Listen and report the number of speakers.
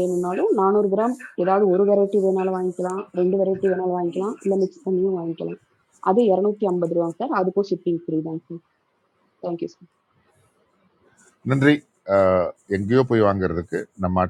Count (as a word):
two